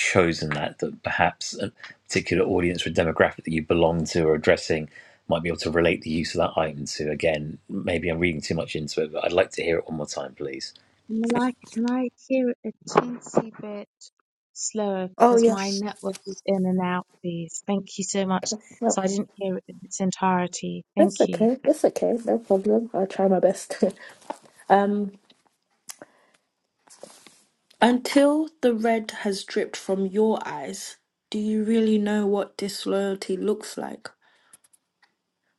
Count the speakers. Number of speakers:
three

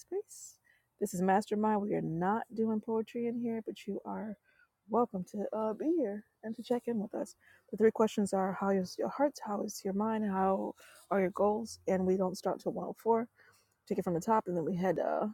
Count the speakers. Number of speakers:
one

